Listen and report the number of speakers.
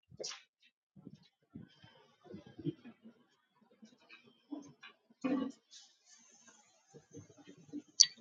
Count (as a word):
zero